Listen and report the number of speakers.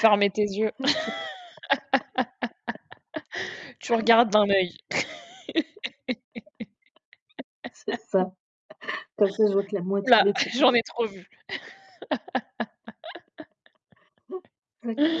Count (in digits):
2